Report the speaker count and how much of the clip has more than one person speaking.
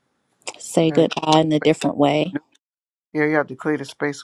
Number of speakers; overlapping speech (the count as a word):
two, about 6%